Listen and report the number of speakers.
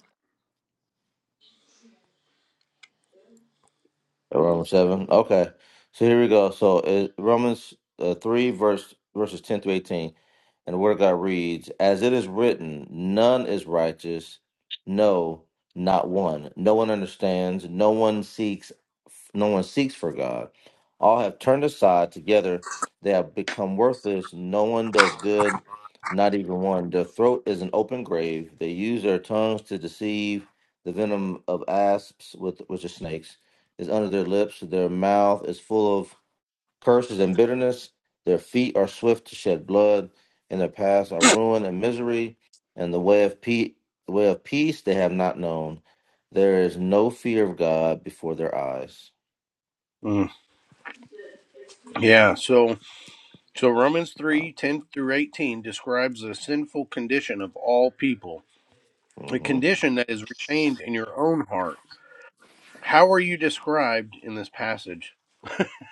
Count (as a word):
two